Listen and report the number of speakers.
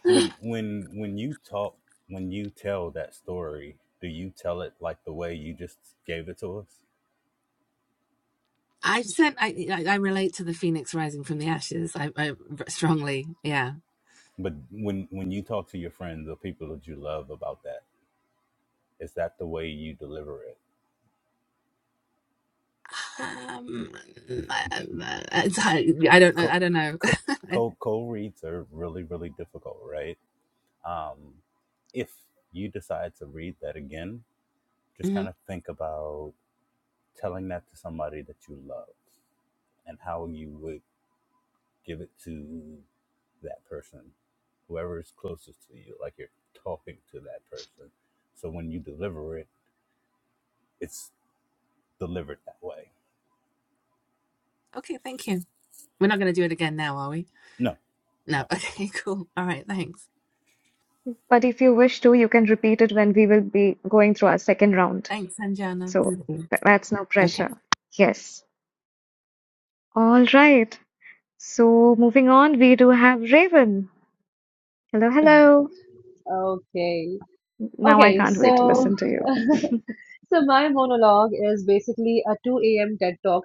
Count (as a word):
four